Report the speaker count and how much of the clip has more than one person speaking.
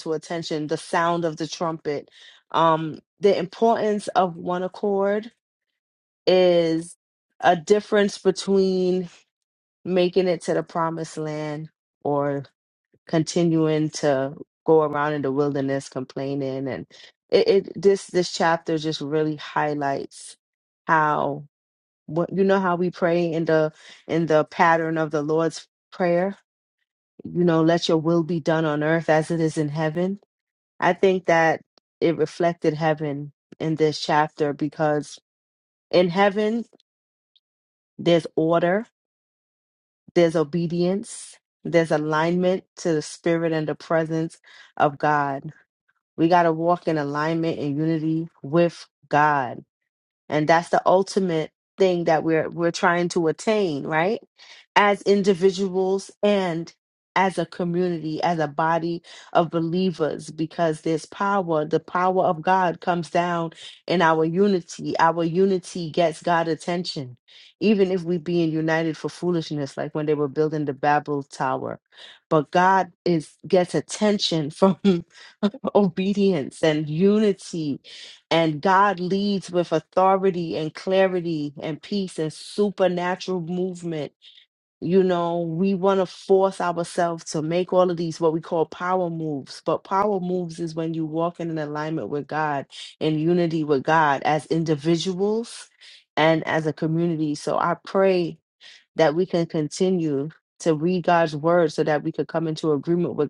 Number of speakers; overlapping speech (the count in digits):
1, no overlap